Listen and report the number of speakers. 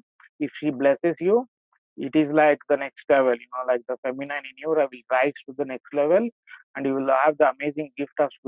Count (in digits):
1